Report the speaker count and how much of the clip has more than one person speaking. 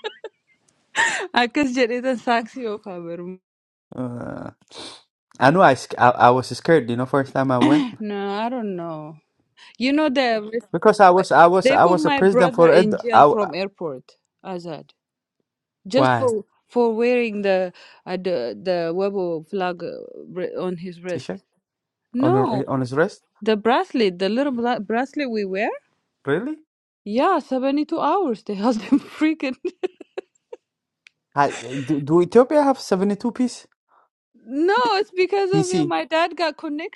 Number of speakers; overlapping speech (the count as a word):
two, about 8%